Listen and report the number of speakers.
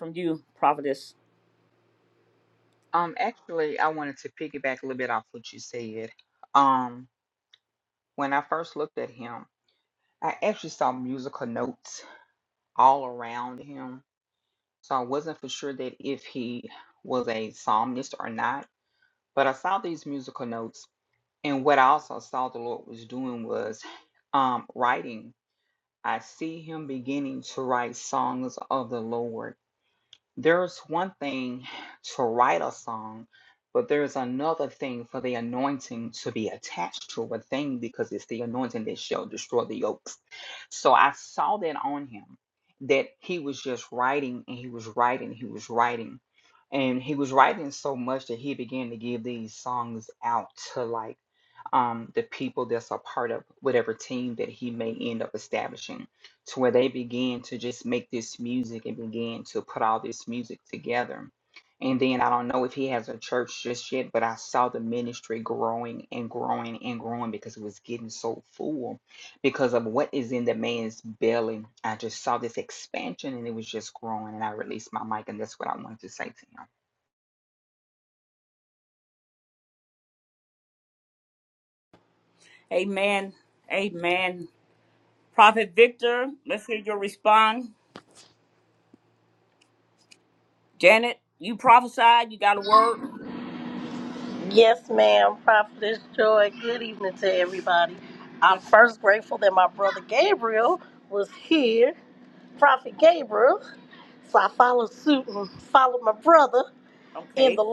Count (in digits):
3